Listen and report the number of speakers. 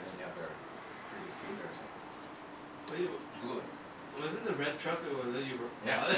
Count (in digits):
2